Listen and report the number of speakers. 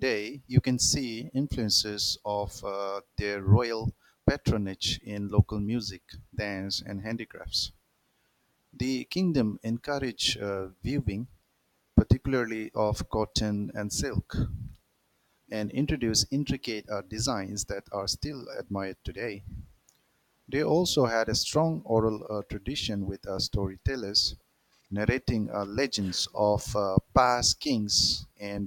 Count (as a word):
one